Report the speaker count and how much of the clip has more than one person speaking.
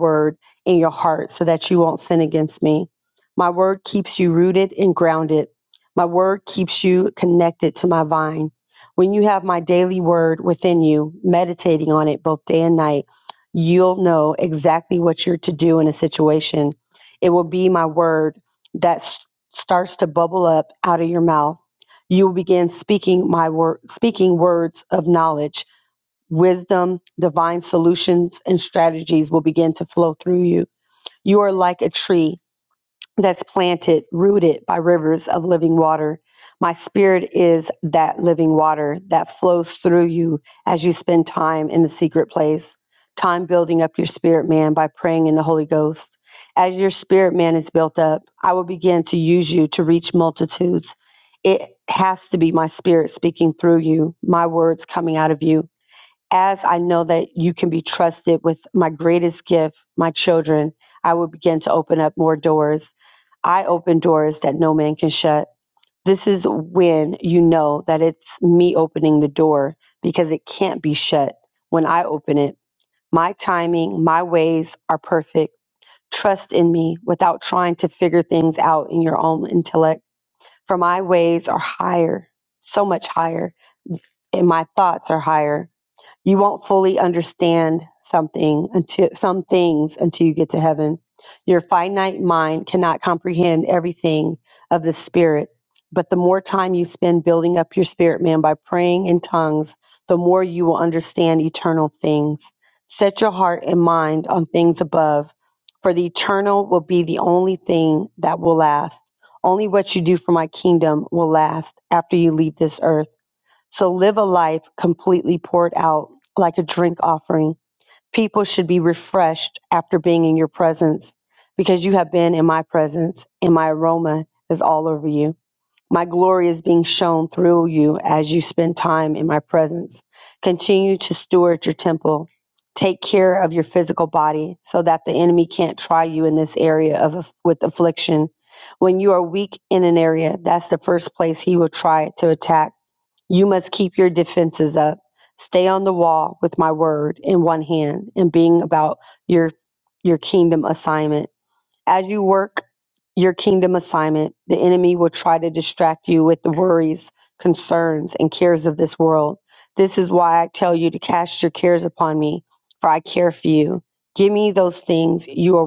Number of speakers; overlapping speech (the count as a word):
one, no overlap